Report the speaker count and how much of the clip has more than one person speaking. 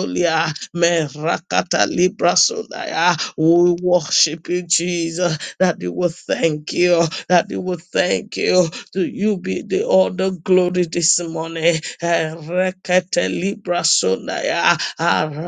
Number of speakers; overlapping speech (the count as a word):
one, no overlap